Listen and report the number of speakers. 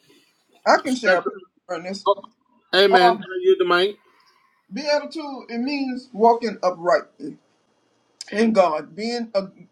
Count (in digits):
2